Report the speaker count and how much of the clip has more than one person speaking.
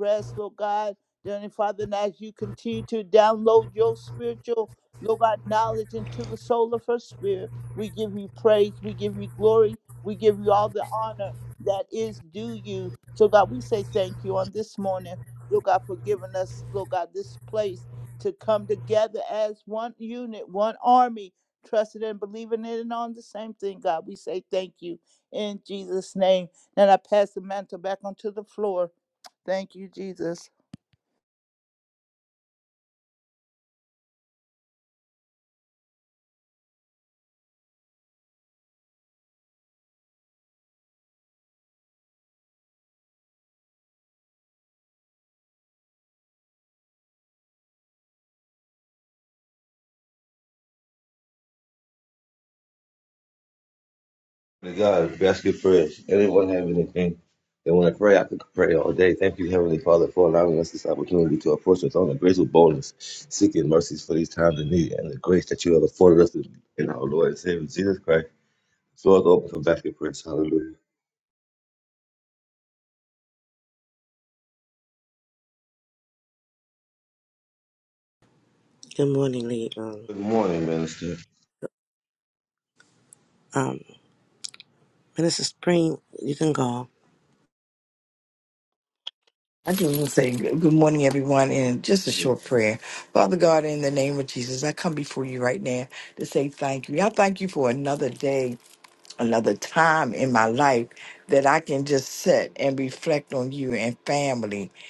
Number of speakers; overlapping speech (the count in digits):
4, no overlap